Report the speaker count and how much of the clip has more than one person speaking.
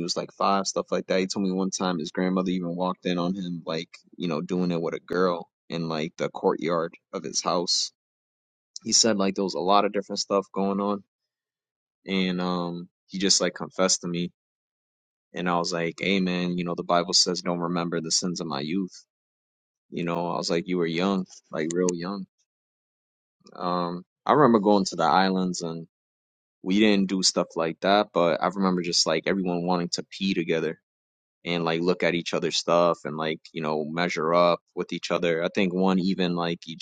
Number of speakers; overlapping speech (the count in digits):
1, no overlap